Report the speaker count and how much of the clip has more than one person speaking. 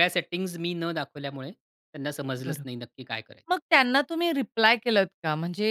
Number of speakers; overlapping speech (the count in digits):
2, about 2%